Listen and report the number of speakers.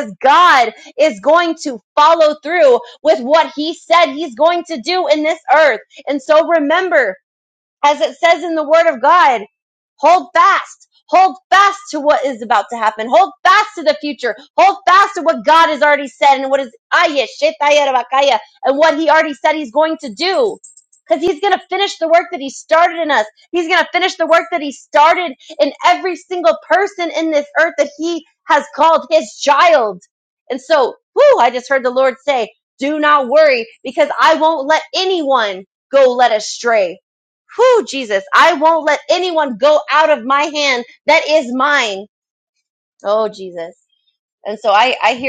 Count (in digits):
1